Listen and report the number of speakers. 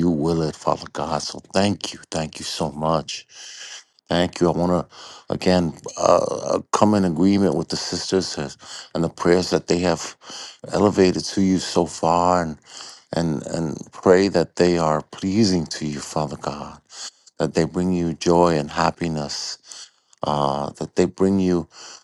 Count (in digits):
1